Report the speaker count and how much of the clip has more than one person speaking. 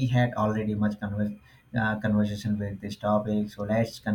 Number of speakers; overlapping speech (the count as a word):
one, no overlap